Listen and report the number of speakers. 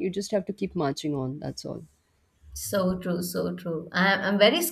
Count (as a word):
two